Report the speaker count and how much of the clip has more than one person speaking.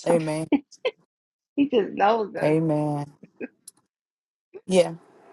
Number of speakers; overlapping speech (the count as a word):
two, about 9%